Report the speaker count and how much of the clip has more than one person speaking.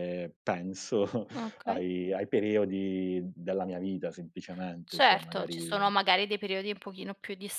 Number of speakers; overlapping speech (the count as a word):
two, about 14%